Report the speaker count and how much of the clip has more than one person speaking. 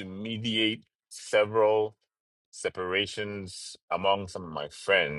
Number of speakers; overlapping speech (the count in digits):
1, no overlap